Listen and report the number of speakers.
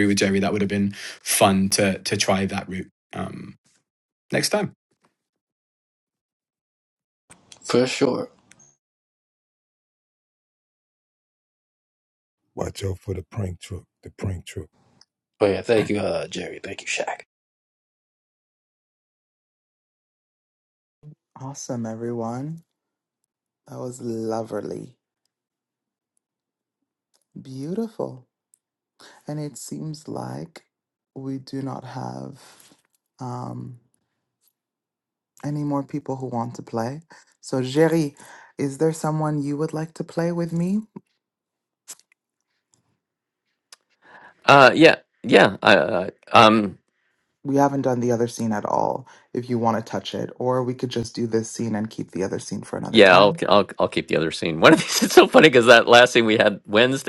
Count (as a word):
five